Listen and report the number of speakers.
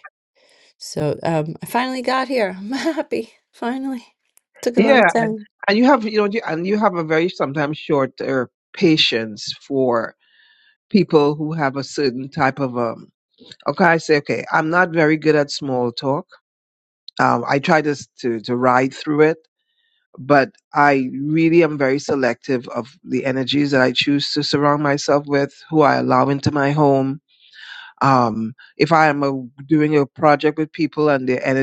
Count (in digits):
2